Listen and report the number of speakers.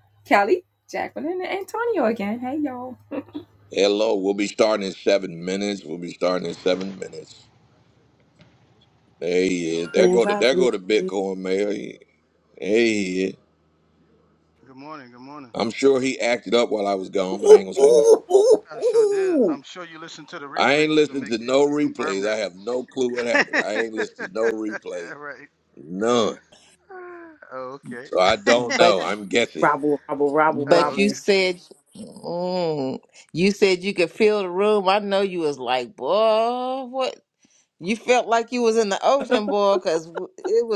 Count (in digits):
5